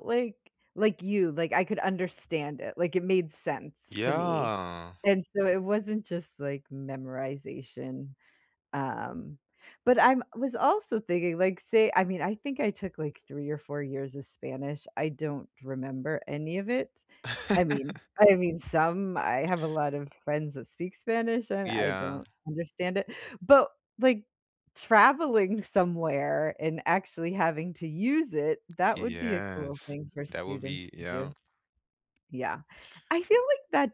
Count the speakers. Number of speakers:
two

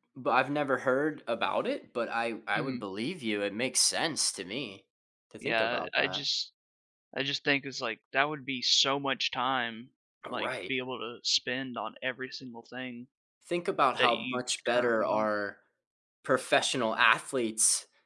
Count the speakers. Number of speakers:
two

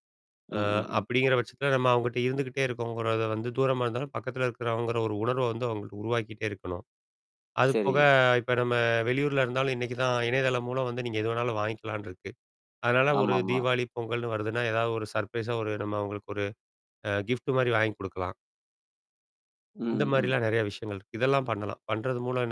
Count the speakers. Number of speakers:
two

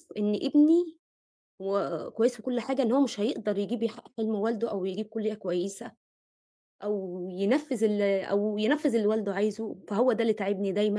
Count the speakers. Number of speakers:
one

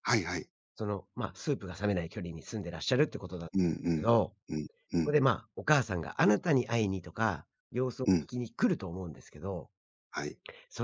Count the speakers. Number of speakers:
two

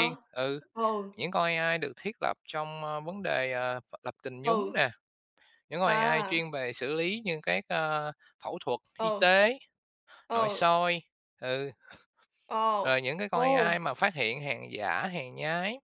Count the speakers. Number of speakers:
two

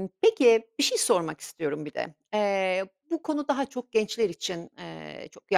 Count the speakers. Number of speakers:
one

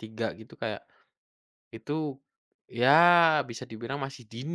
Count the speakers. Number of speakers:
one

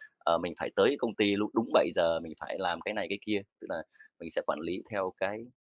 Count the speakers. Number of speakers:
one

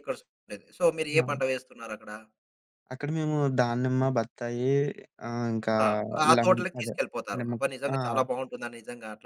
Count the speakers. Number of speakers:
two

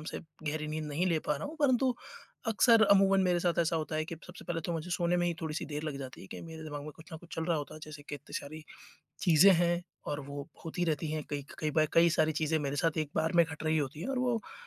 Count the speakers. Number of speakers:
one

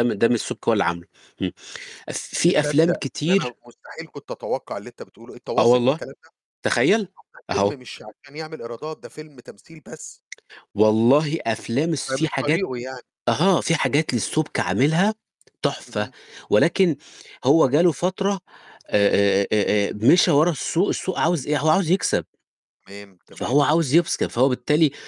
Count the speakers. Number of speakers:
two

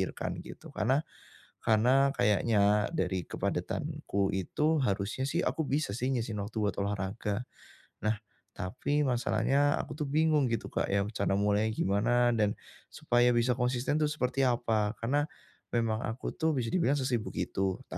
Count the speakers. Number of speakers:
one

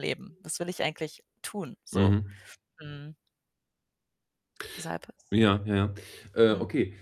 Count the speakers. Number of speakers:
two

